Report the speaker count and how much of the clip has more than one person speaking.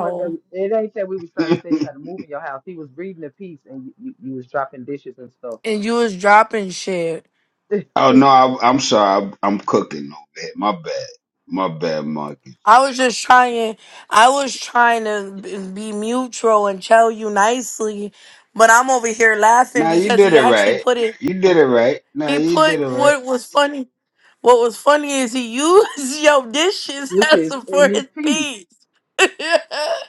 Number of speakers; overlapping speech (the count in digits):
3, about 11%